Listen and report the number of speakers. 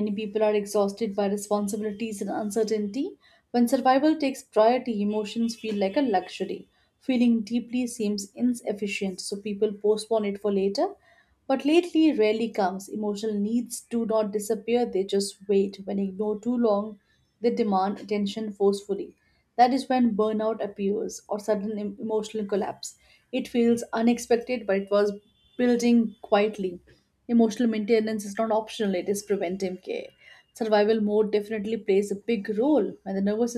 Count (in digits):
1